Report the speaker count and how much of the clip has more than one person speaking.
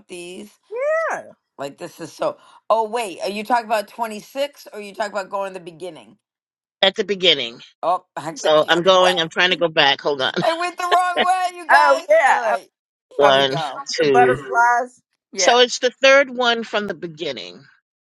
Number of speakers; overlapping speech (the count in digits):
3, about 16%